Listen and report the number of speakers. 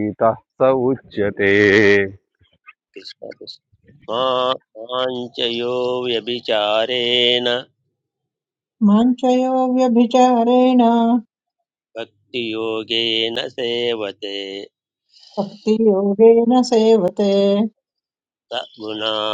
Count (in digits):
3